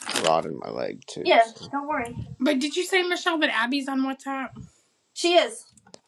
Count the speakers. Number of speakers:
three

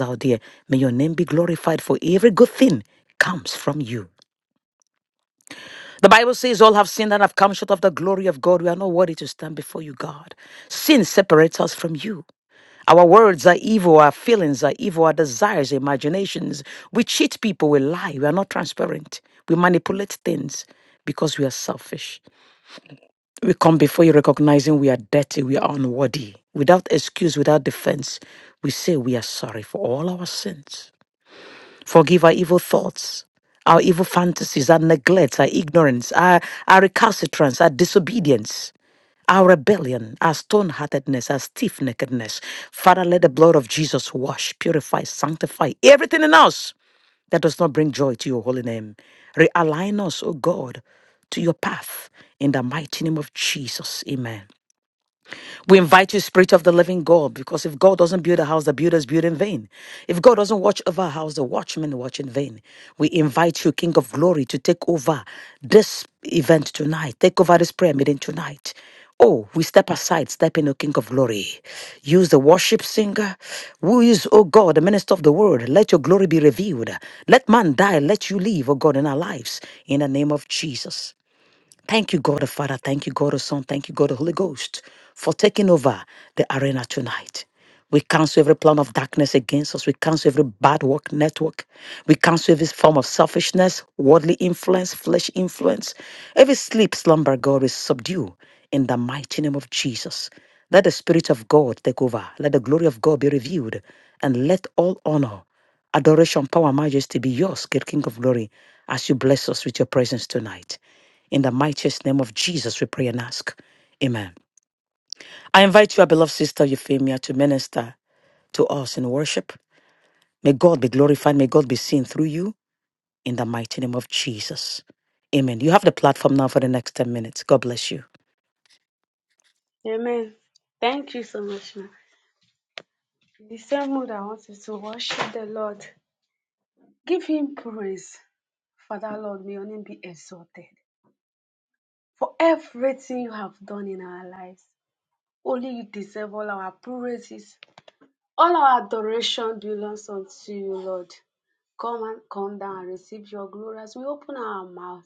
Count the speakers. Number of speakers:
two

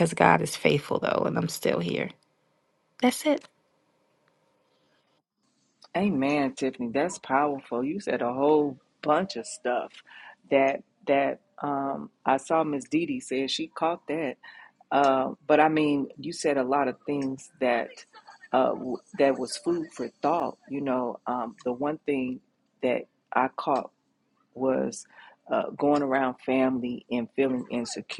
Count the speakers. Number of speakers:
two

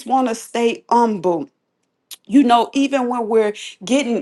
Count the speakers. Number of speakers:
one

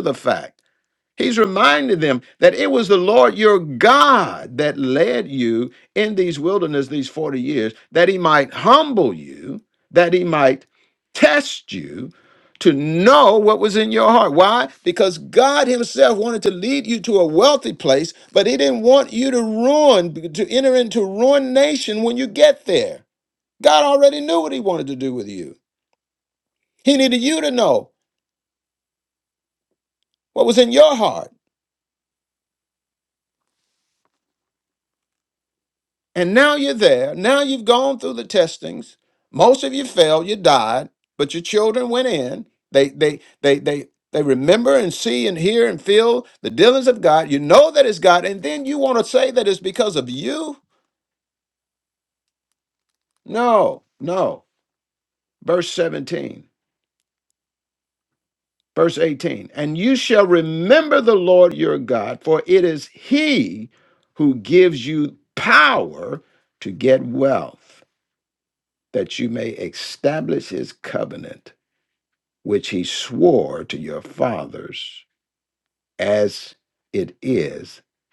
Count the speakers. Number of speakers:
one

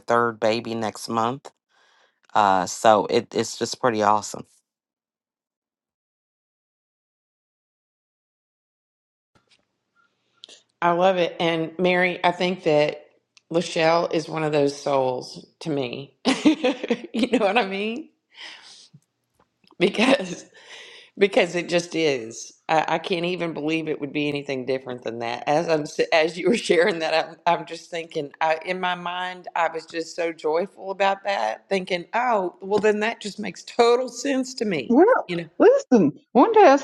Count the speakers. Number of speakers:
three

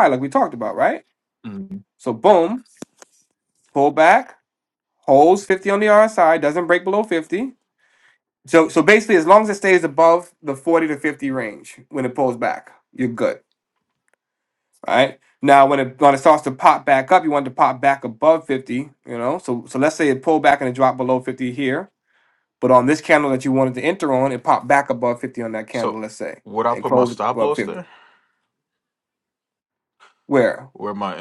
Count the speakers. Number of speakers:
two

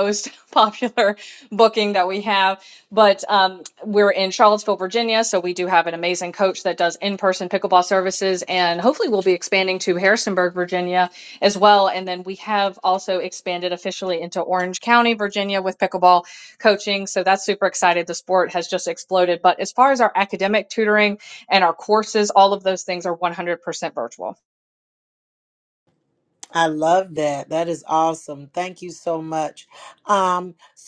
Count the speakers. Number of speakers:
two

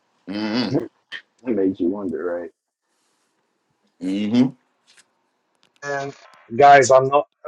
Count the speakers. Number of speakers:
three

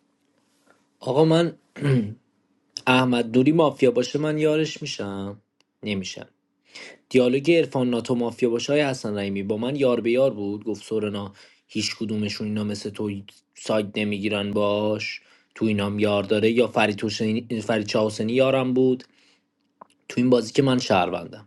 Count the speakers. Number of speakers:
one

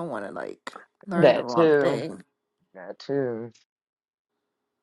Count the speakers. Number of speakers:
two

